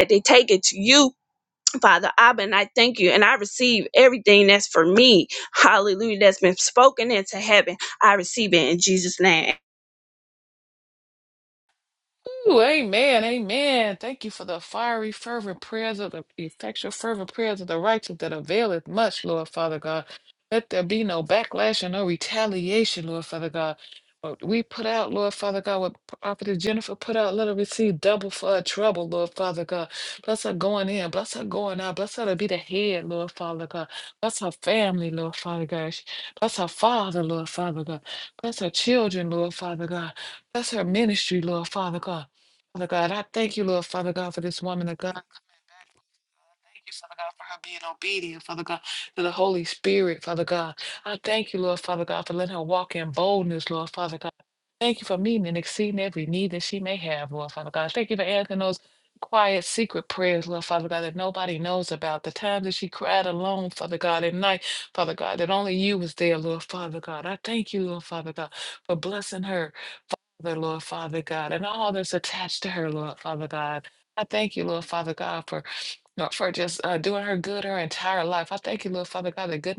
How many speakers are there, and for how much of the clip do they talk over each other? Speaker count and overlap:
2, no overlap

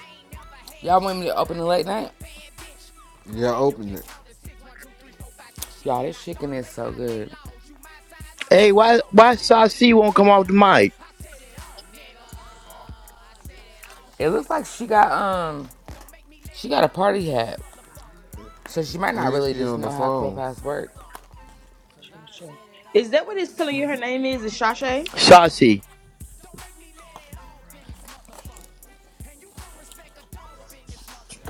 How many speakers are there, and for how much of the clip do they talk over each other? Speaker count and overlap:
4, about 4%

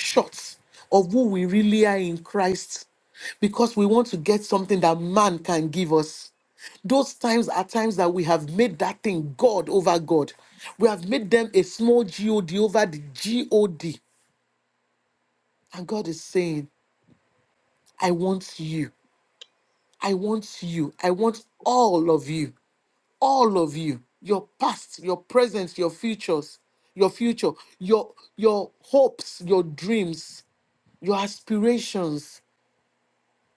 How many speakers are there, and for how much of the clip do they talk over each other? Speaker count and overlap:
1, no overlap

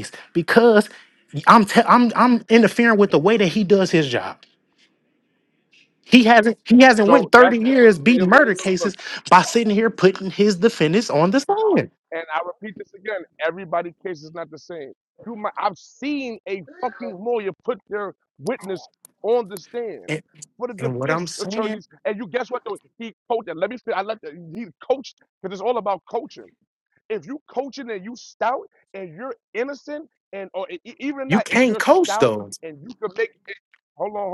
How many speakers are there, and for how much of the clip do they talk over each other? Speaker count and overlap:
2, about 12%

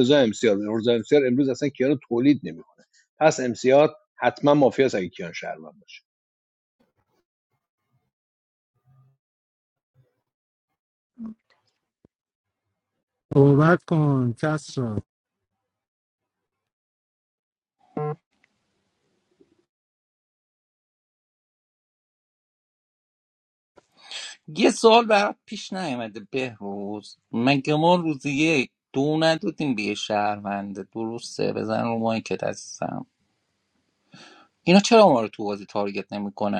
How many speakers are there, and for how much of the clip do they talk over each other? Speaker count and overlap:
3, no overlap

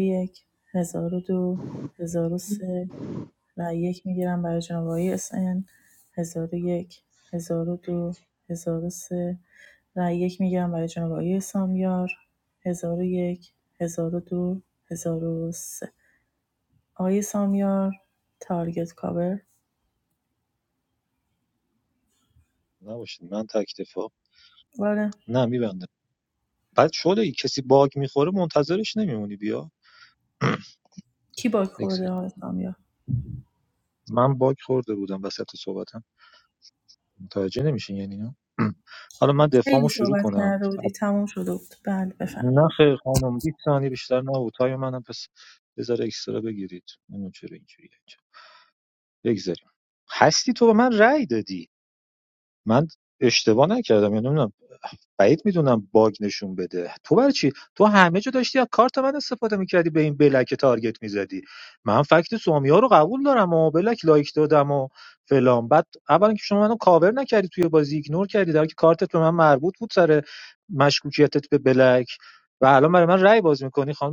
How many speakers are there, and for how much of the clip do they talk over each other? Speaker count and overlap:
2, about 2%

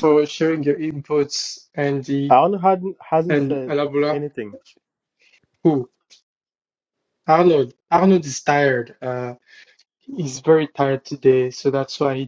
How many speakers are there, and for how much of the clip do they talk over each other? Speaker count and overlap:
2, about 5%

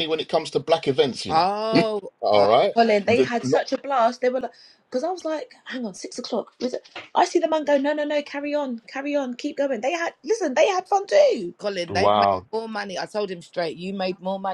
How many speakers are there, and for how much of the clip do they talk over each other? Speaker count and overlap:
3, about 11%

